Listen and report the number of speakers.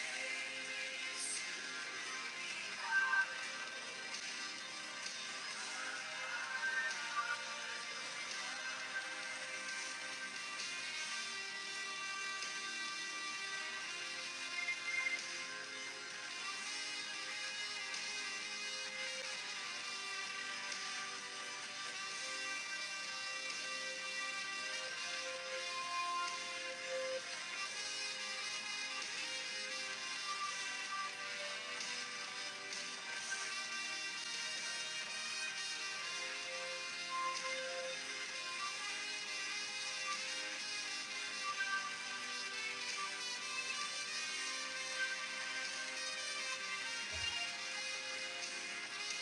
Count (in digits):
0